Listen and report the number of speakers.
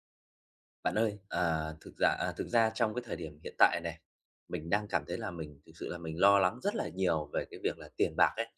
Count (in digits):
1